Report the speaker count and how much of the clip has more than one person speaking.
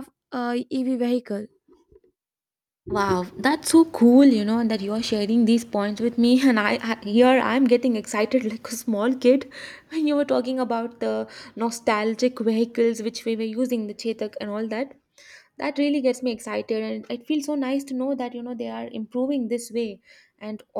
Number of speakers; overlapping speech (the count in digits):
2, no overlap